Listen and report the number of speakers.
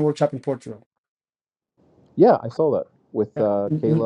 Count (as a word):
two